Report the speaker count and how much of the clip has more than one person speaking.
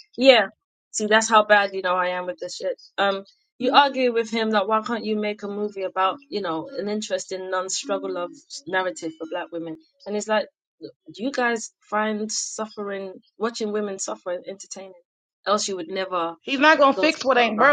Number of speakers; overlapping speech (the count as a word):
two, about 3%